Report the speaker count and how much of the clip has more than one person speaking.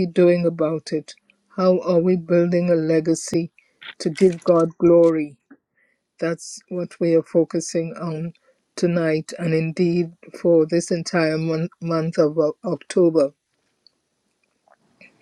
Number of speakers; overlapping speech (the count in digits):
1, no overlap